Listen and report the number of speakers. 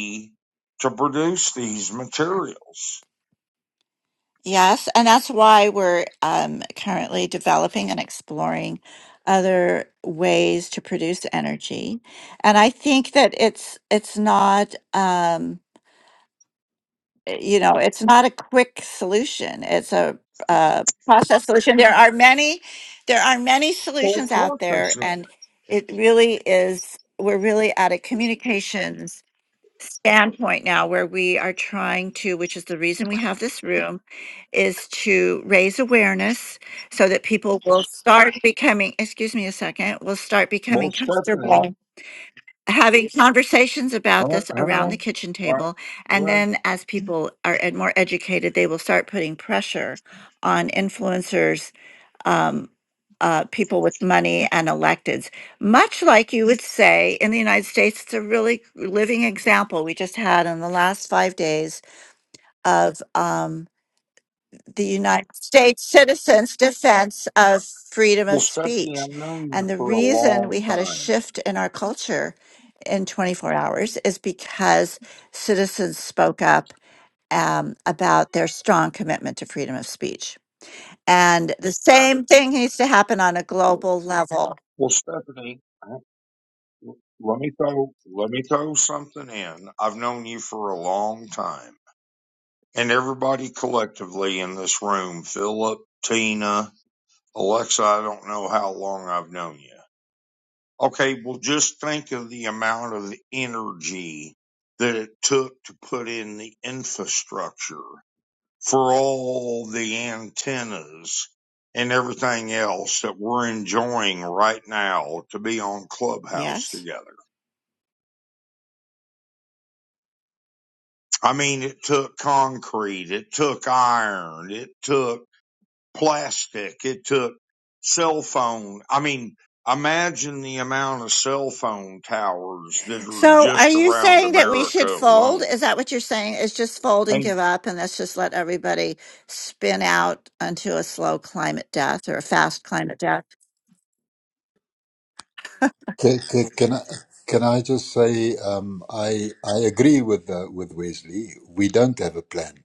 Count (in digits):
3